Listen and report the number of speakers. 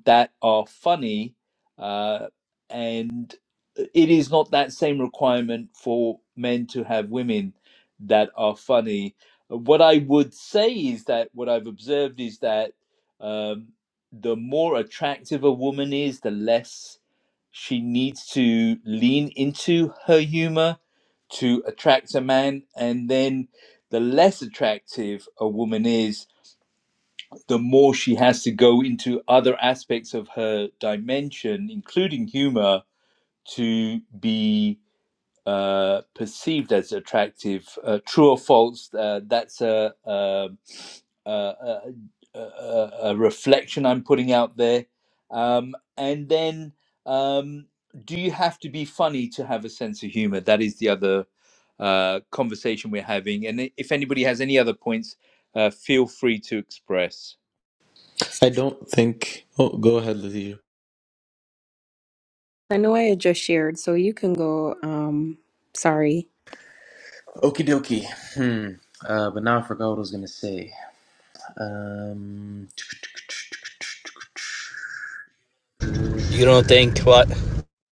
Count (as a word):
four